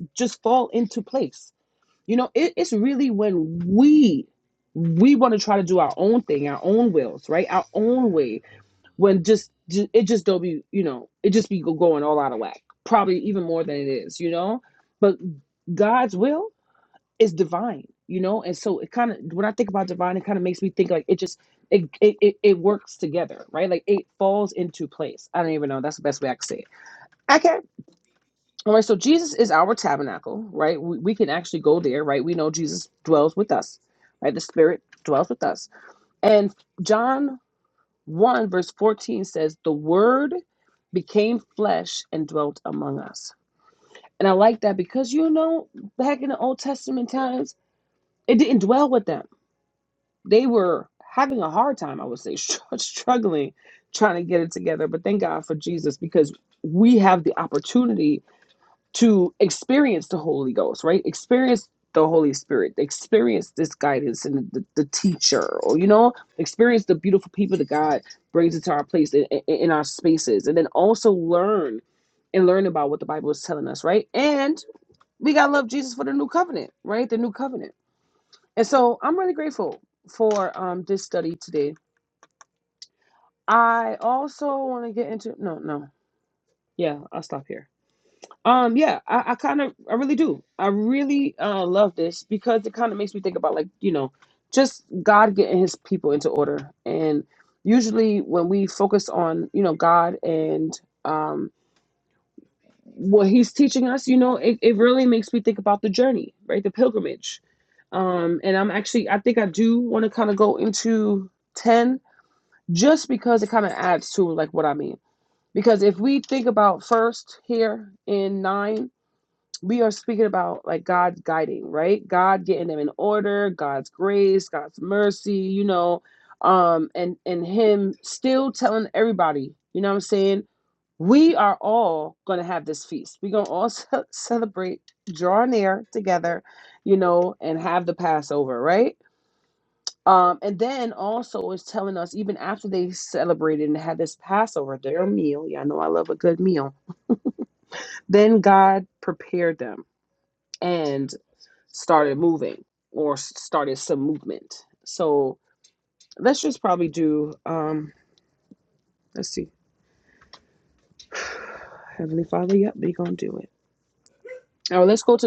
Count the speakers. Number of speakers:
1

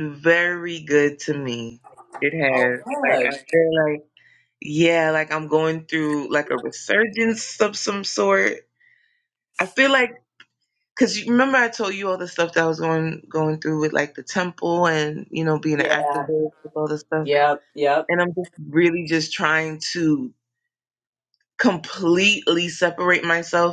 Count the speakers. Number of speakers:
2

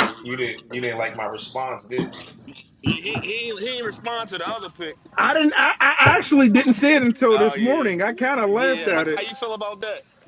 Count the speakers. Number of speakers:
3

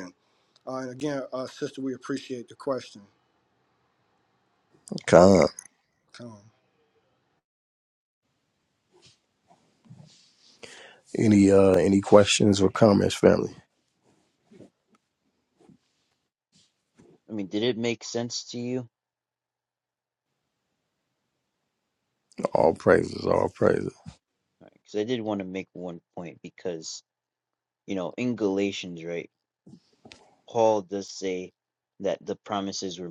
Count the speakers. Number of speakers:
3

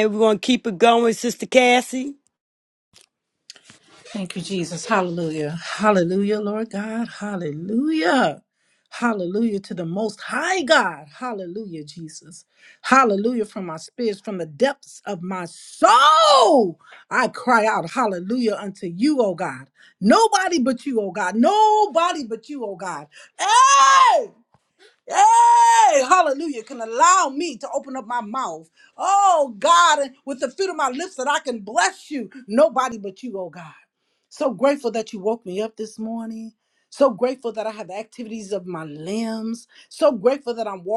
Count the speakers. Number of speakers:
2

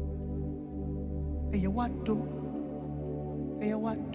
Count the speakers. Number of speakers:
0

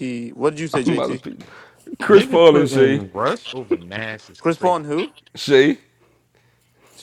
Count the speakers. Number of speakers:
3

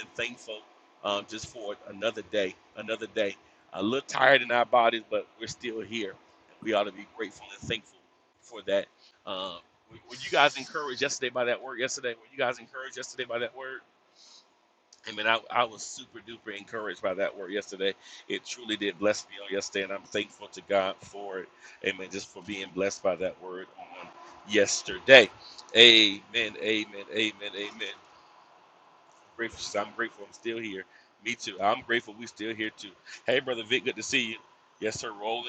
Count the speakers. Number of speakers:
1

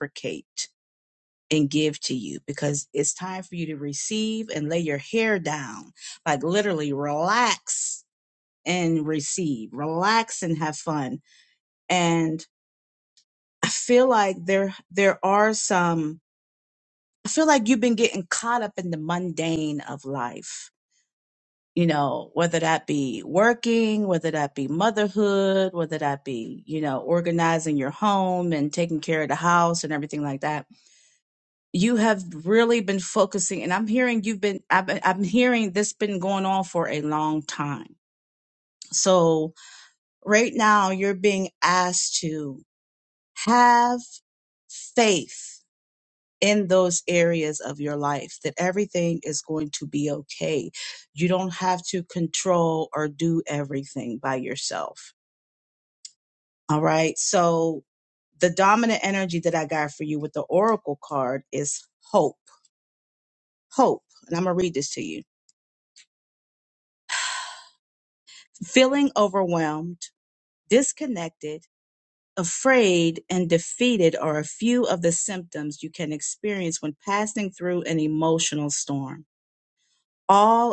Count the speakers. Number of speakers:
1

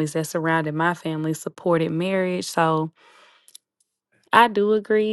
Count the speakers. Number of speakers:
1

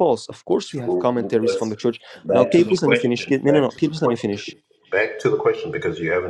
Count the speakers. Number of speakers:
2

